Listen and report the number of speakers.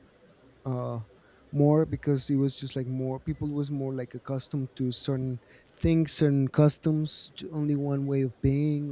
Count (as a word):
one